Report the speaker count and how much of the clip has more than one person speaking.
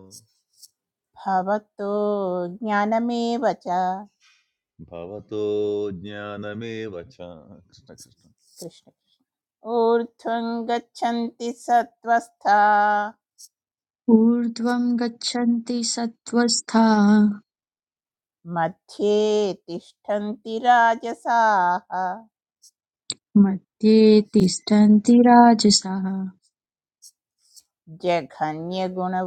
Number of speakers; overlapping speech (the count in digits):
3, no overlap